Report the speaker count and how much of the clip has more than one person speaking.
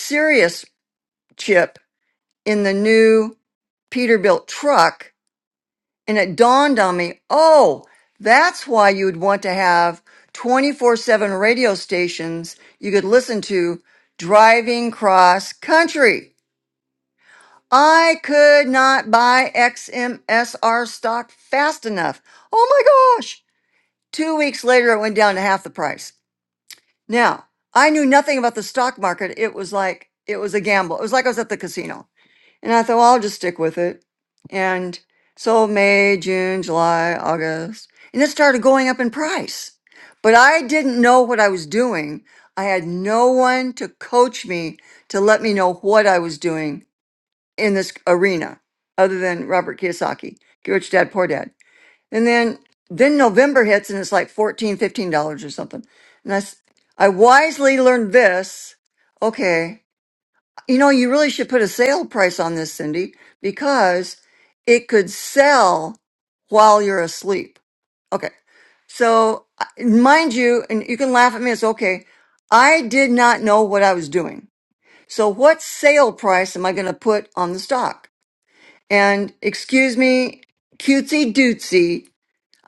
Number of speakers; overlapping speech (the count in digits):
1, no overlap